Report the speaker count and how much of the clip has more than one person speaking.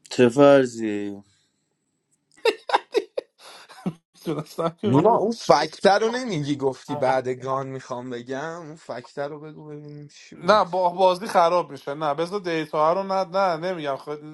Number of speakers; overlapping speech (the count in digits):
3, about 4%